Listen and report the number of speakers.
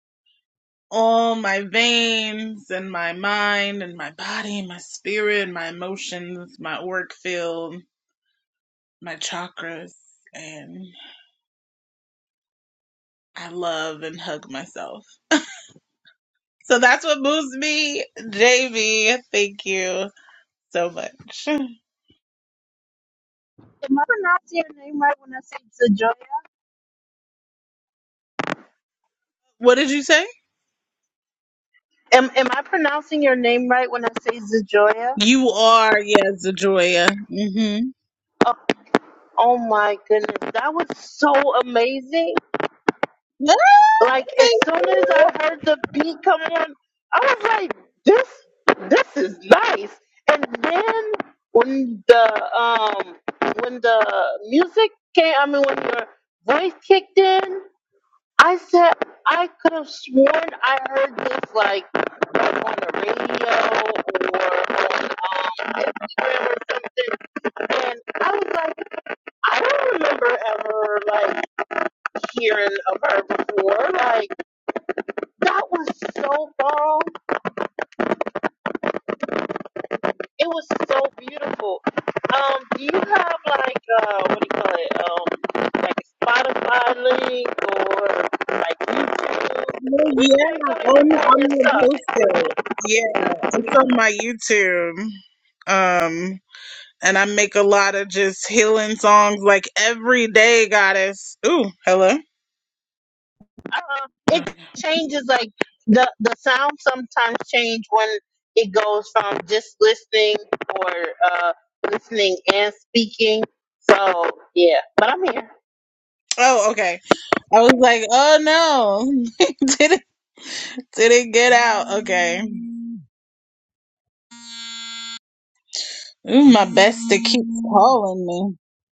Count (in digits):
2